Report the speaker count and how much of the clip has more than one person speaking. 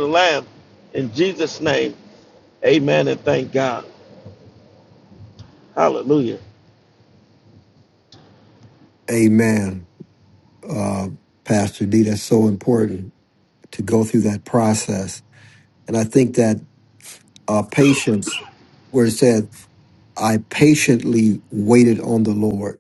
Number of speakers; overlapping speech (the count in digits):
2, no overlap